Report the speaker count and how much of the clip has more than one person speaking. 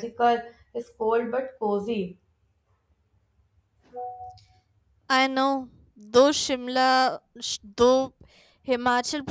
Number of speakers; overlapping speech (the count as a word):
two, no overlap